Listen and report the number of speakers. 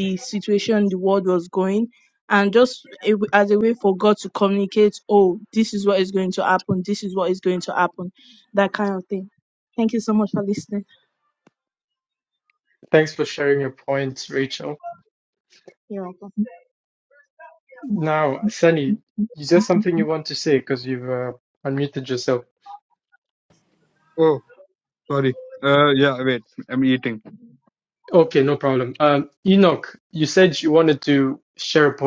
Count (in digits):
3